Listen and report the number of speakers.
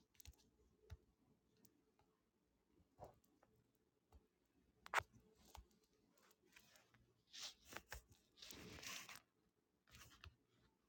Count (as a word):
zero